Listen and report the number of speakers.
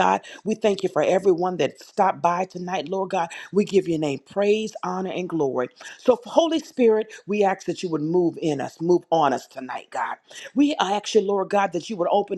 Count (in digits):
1